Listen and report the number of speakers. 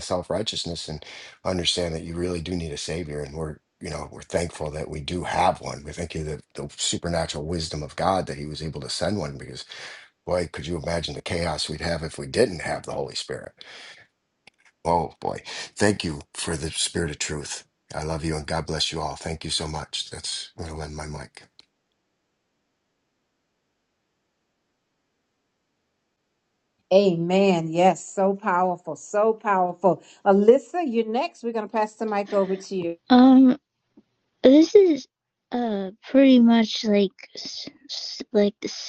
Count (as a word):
three